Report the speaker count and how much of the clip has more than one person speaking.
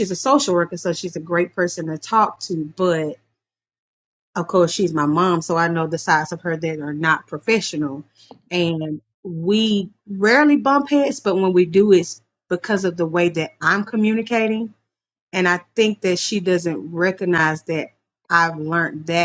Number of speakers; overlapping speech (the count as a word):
one, no overlap